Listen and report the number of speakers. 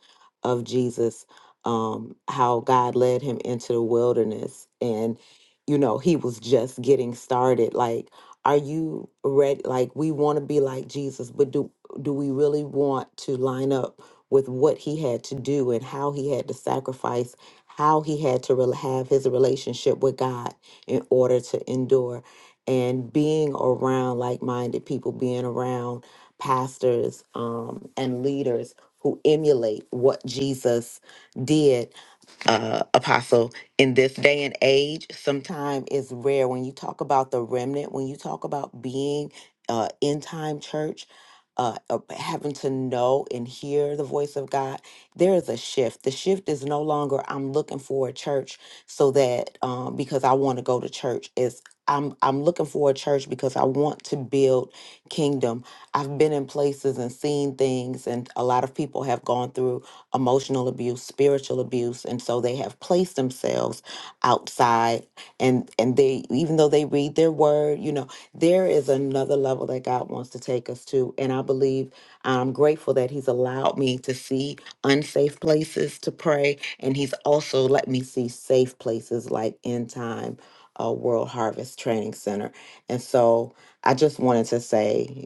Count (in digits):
1